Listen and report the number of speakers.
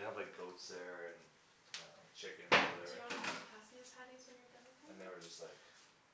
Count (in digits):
2